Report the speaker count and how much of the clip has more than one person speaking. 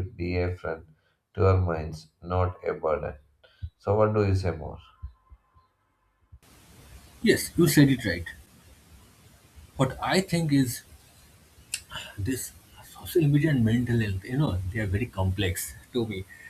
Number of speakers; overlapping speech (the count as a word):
two, no overlap